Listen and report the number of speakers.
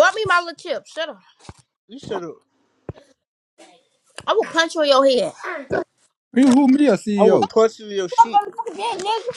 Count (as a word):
three